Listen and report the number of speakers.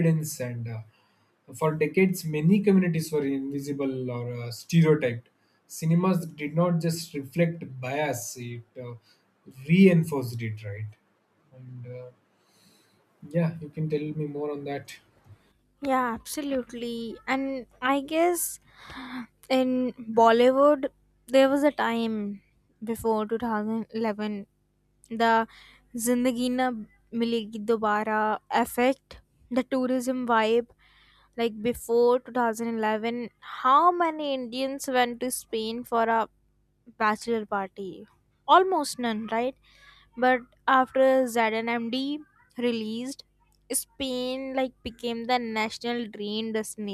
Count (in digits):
2